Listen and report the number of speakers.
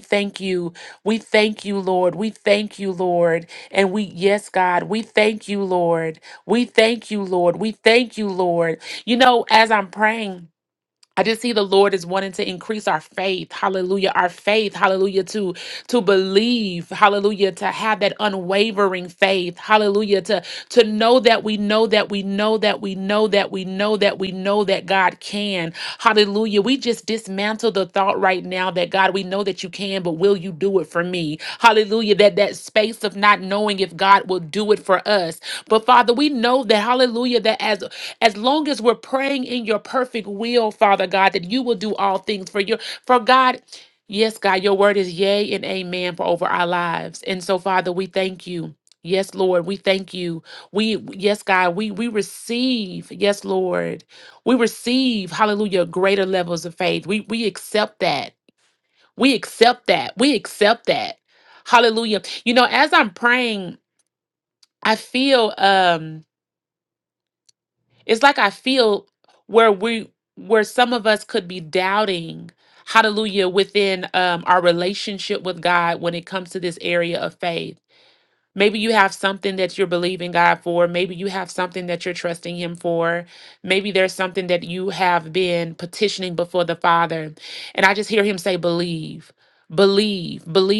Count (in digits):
1